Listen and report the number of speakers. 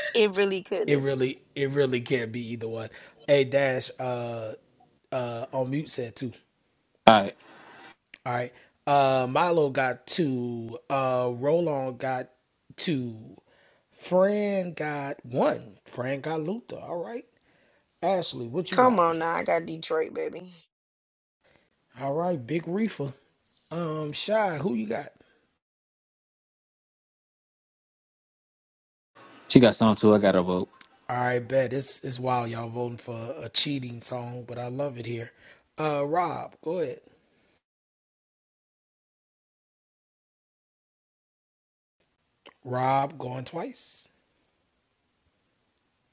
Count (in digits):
3